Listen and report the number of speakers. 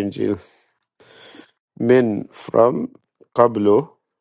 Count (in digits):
1